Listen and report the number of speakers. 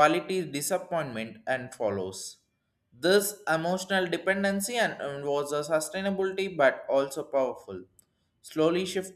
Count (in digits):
1